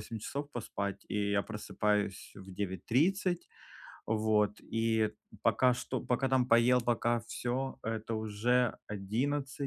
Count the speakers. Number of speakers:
1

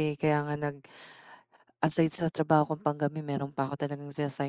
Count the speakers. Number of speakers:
1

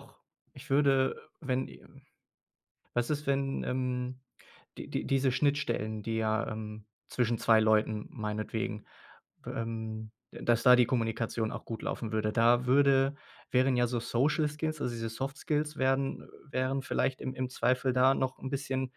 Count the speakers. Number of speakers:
1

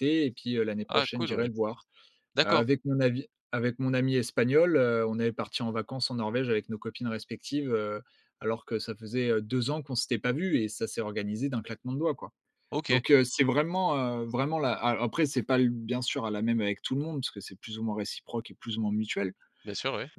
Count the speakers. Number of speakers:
2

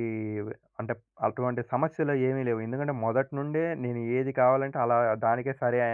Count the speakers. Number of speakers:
1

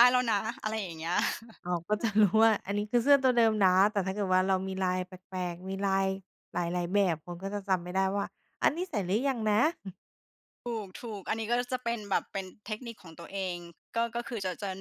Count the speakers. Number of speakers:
2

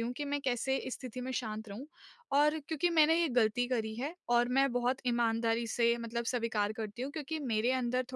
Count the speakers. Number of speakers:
1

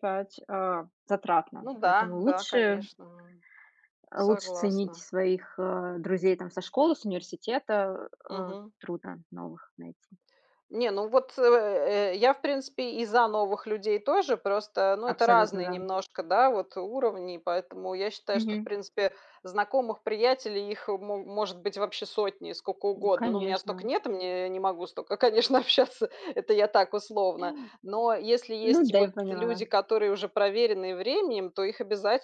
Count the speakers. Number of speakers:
2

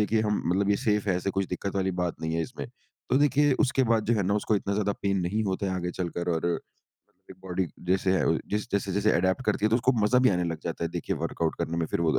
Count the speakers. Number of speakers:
1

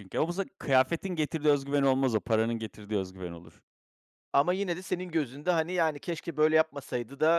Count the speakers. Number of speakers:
2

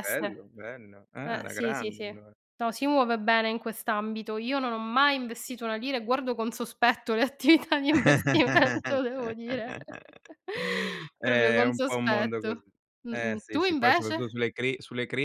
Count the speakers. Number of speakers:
2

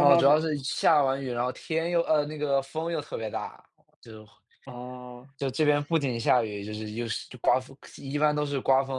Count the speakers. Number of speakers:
2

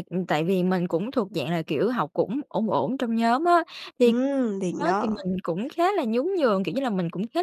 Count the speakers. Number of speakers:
2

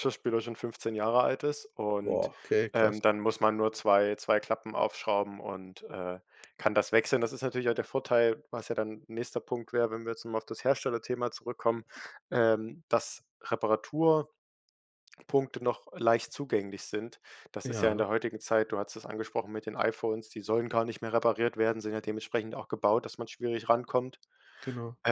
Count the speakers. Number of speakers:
2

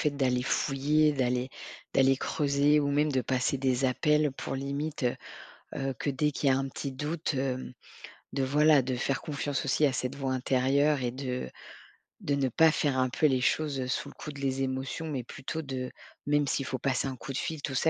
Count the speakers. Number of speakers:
1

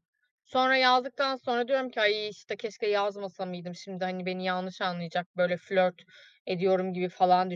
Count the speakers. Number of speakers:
1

